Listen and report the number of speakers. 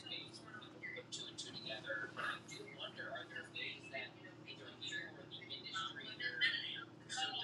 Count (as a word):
zero